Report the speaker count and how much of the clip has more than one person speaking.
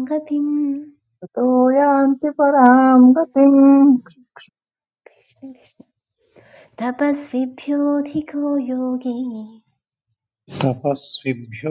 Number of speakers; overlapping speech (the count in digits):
3, no overlap